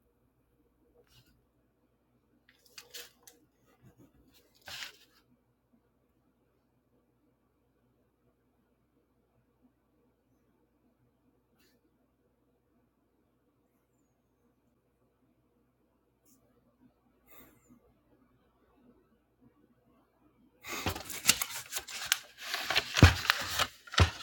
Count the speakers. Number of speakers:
0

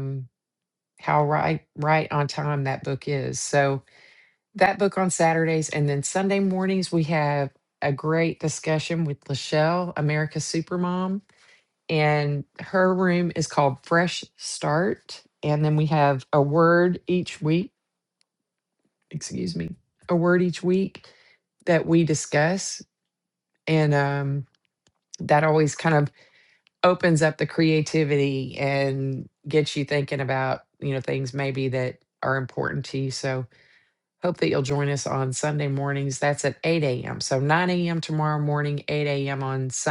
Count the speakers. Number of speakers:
1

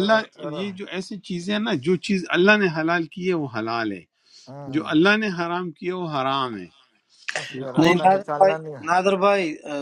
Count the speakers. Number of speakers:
3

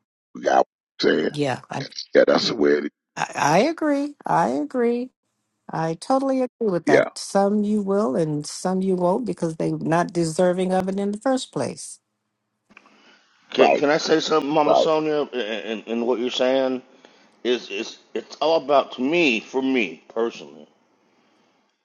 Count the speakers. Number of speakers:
3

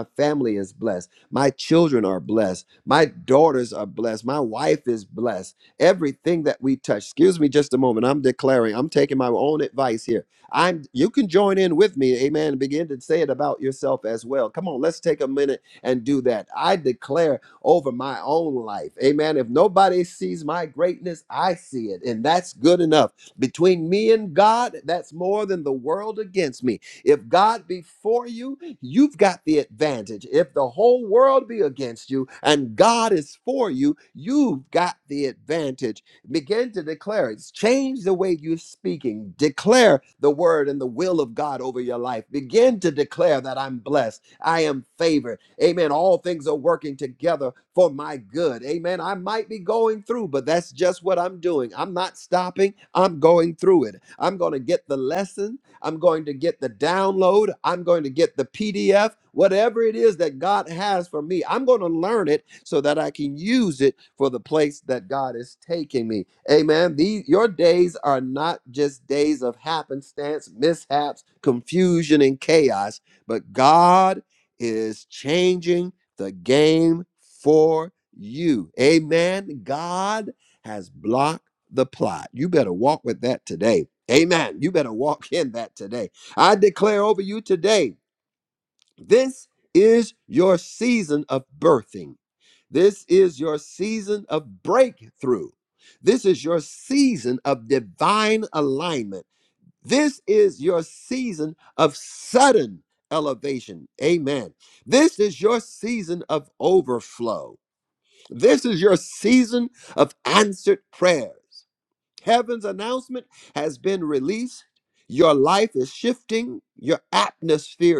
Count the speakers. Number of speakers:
1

